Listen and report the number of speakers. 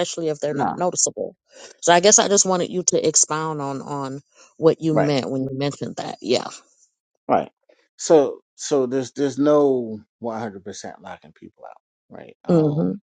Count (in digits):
2